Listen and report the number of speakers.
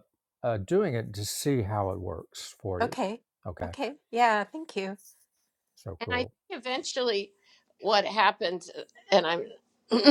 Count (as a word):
three